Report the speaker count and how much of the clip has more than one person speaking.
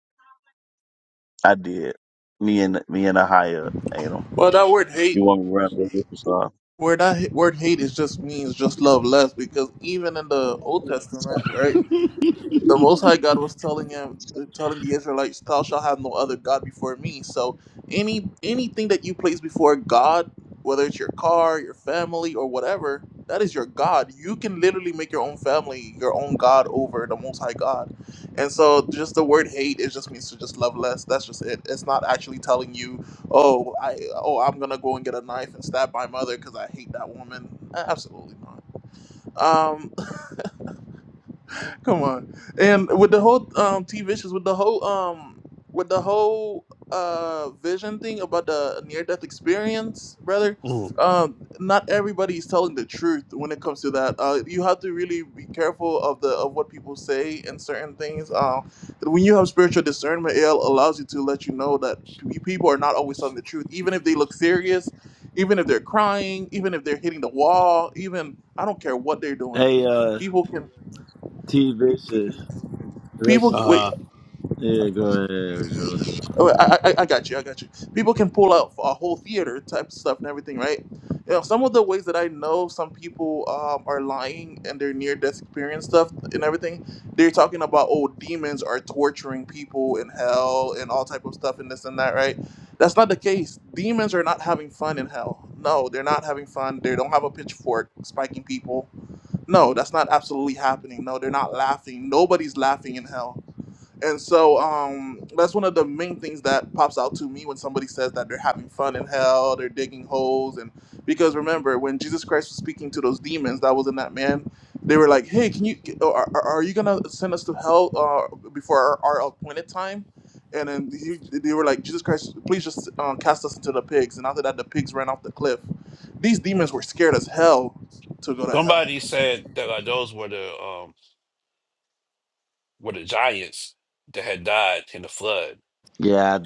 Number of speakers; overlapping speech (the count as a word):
four, about 1%